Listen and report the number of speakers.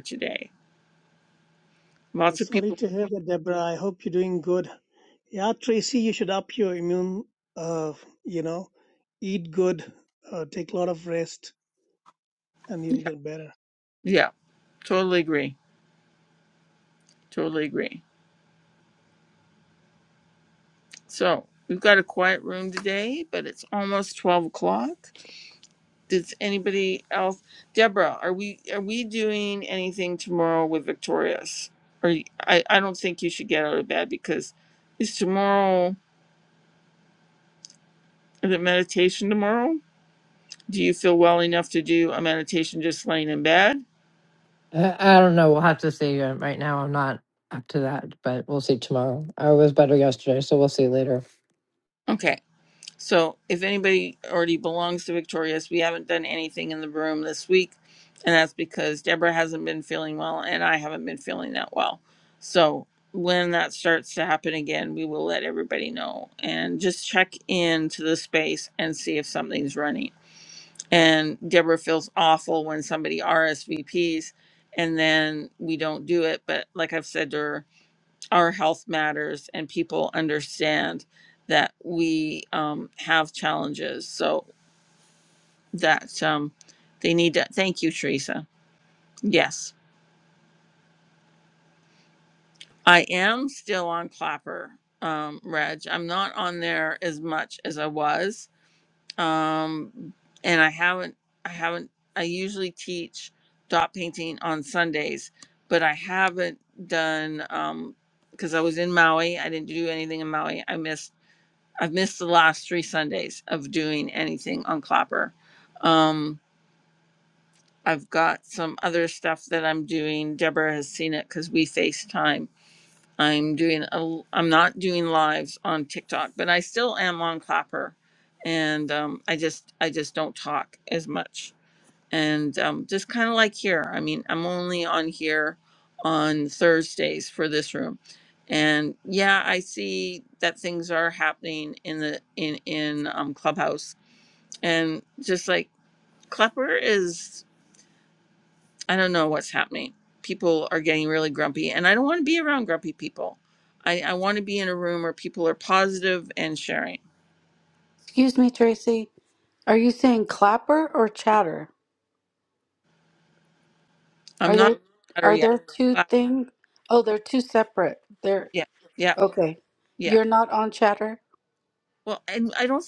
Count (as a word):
four